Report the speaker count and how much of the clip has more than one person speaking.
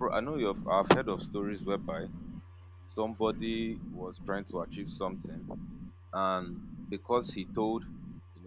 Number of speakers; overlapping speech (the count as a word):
one, no overlap